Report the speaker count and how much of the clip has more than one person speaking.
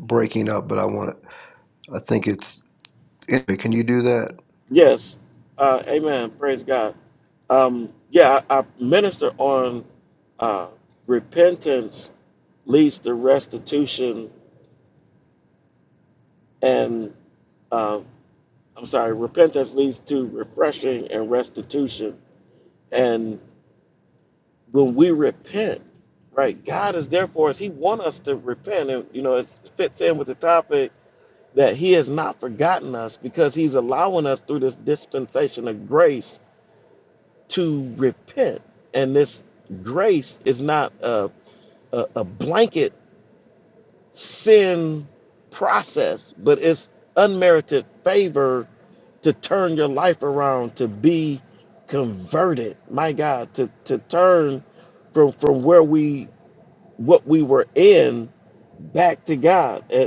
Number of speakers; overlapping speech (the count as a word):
two, no overlap